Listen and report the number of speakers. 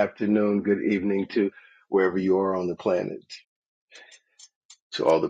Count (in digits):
1